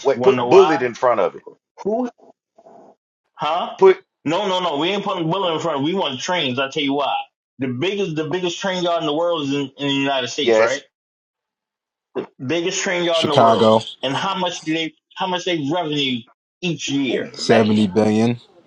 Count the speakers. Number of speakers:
three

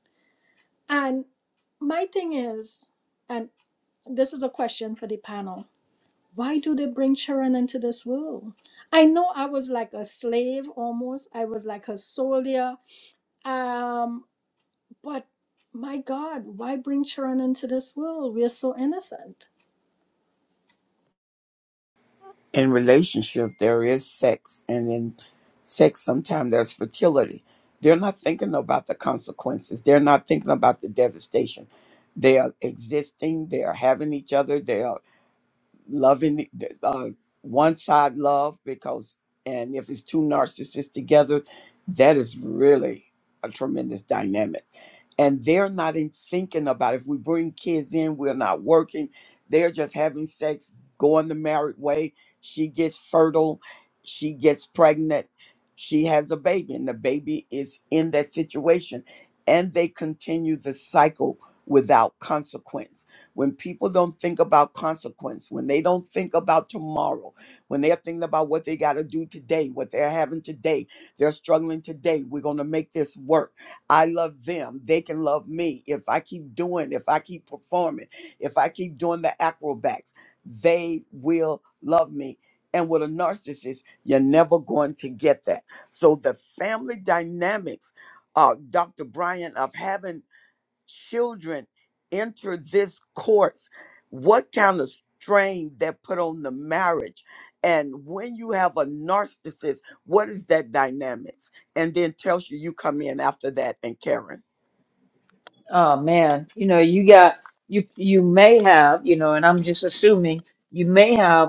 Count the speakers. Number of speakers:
three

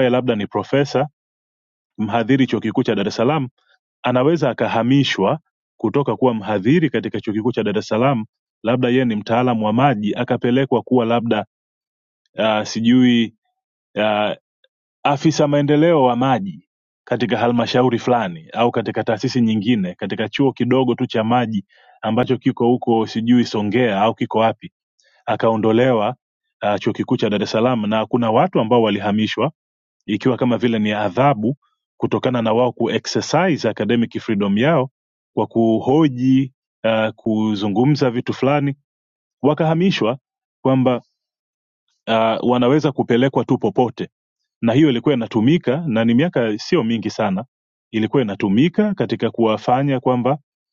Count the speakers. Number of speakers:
one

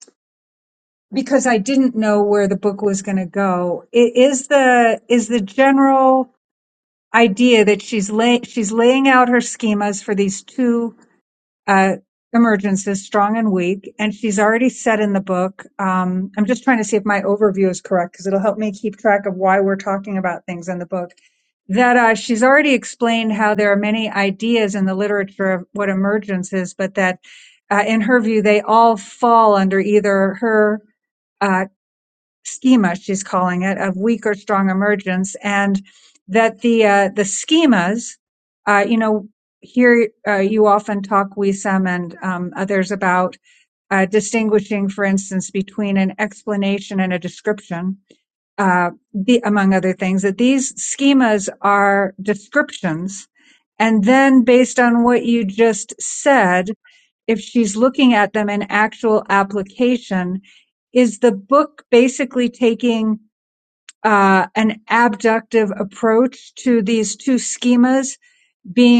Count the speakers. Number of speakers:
one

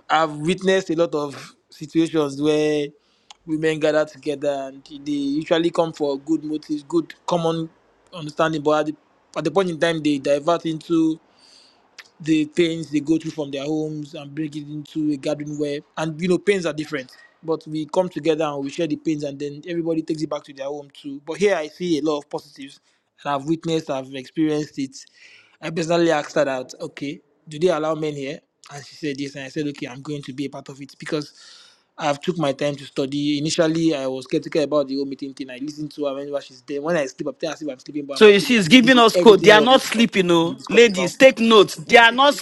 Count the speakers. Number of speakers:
two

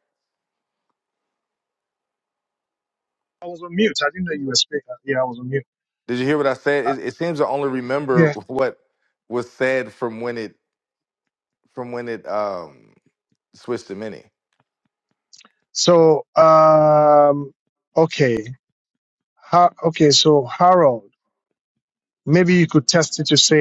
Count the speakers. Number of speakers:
two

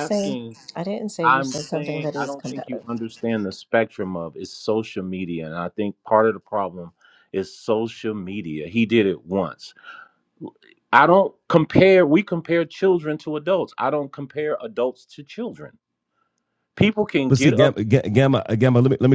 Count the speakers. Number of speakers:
three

